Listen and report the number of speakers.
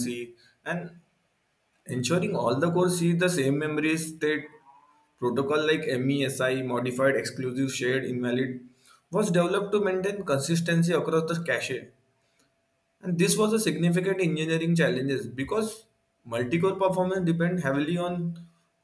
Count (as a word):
one